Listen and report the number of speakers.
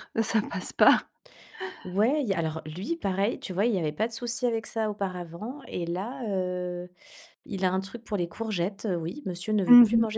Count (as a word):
two